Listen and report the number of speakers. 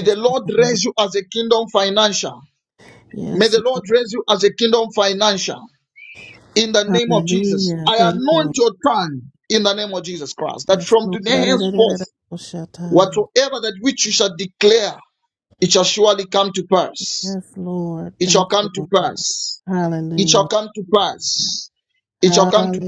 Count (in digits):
2